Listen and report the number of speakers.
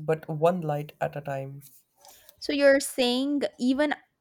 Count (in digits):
2